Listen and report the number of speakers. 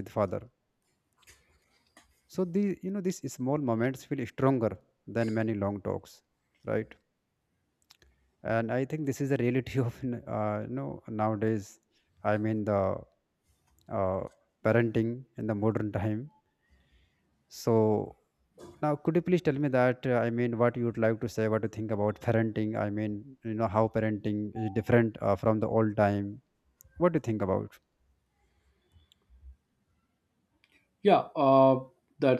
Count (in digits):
2